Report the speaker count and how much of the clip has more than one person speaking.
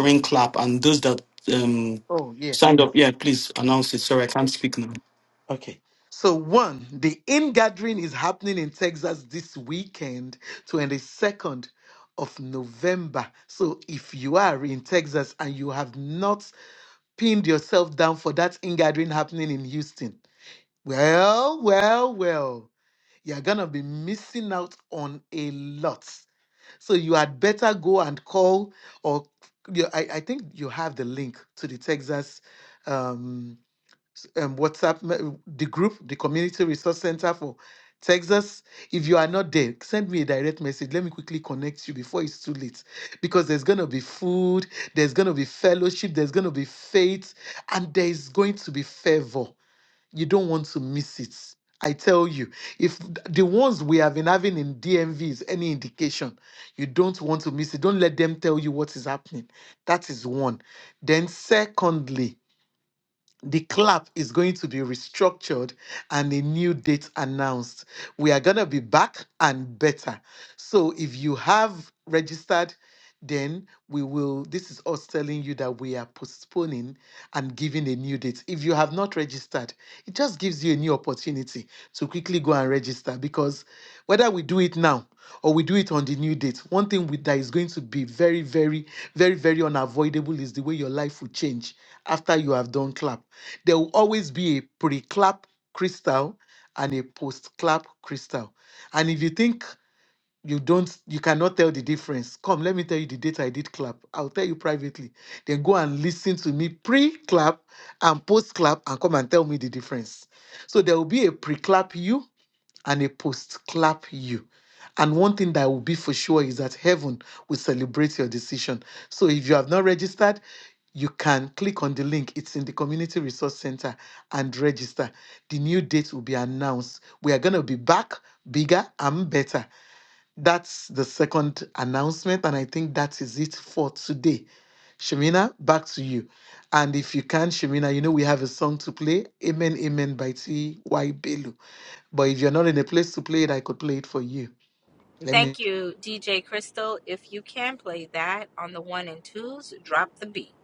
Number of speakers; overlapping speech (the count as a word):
three, under 1%